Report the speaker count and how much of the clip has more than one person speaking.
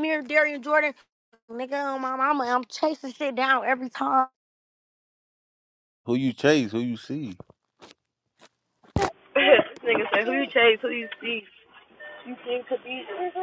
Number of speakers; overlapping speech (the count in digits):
3, no overlap